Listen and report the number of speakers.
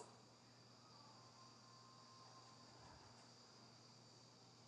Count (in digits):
0